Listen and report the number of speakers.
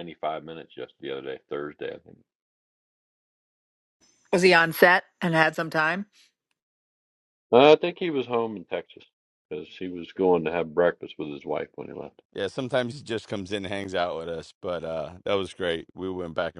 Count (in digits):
3